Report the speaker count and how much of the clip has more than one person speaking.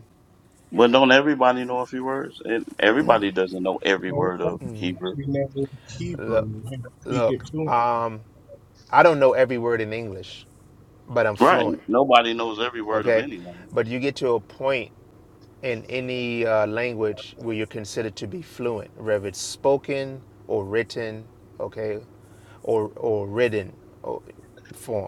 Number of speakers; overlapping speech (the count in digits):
3, about 9%